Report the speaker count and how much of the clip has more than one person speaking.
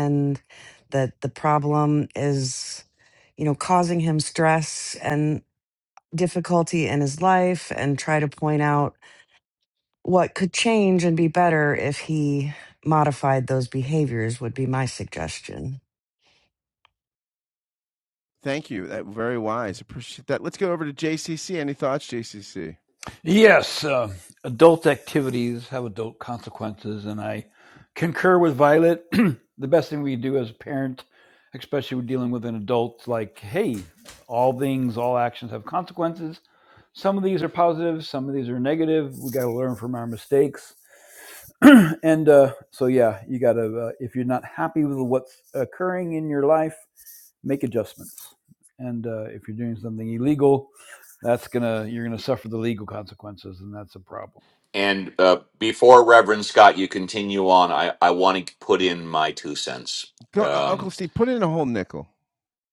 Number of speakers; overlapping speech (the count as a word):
four, about 1%